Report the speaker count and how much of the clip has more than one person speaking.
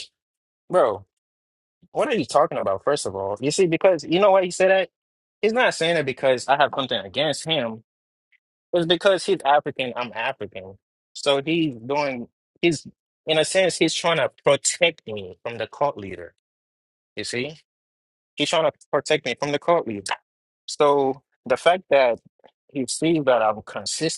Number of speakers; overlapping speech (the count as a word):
one, no overlap